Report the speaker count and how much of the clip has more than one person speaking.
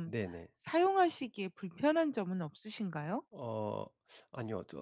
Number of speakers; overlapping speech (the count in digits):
2, under 1%